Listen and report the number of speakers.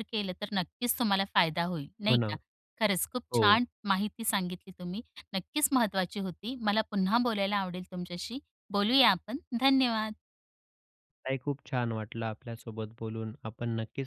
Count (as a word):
two